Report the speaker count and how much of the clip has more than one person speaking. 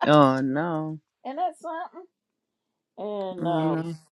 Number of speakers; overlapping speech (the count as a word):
two, about 11%